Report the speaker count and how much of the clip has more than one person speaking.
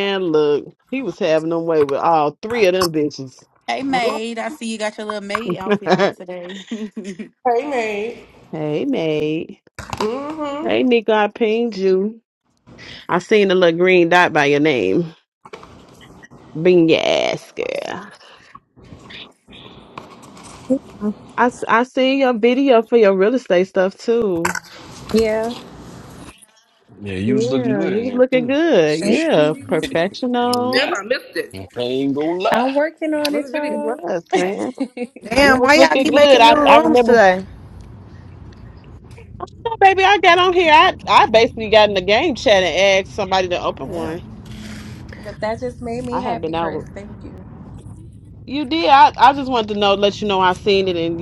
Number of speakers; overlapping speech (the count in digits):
6, about 14%